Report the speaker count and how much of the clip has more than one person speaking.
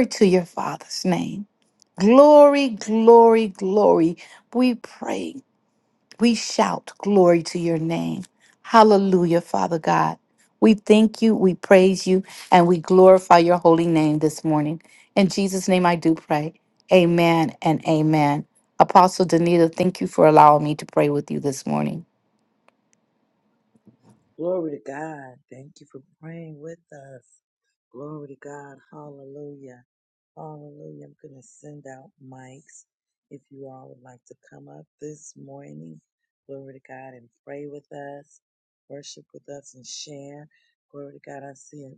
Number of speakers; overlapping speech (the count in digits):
2, no overlap